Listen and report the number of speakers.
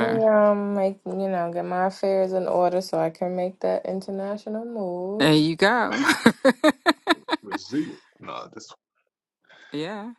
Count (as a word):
three